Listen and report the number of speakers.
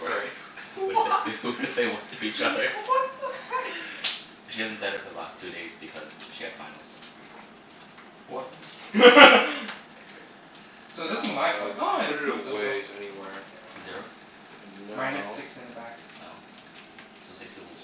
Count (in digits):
3